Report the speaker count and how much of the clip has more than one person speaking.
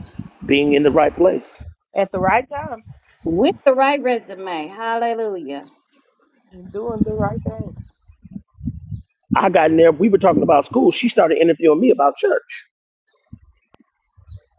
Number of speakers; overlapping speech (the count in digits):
3, no overlap